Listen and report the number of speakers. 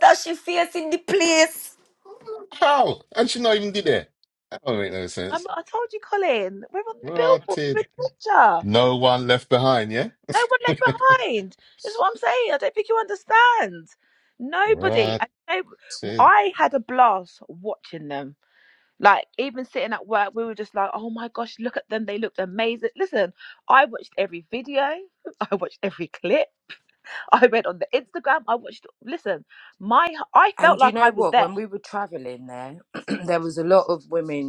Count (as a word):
four